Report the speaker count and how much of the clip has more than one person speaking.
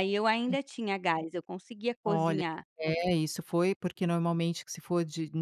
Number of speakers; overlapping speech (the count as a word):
two, about 8%